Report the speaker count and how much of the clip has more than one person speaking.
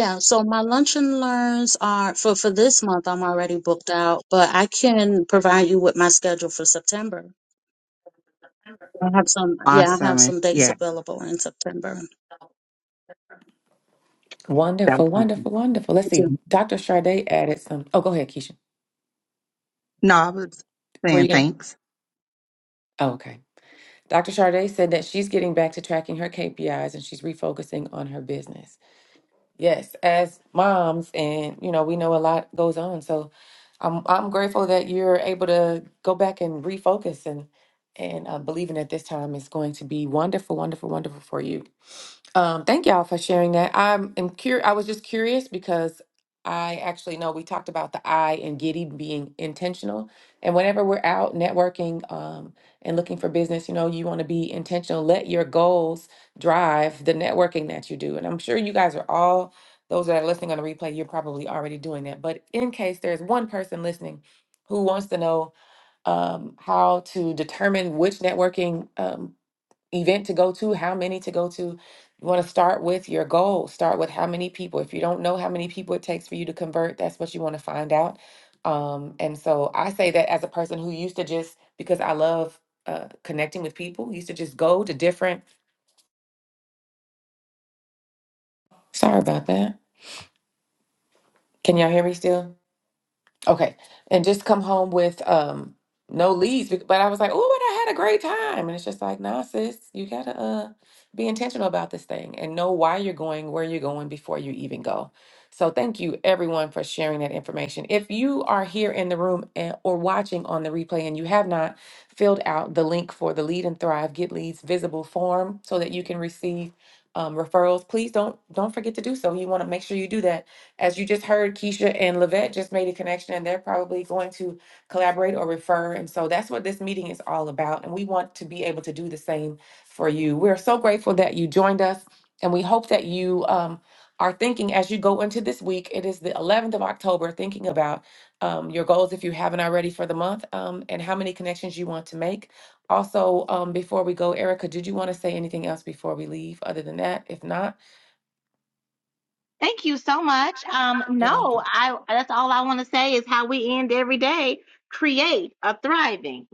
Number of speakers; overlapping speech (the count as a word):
four, about 1%